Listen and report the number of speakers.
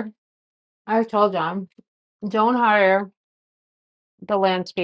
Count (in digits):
1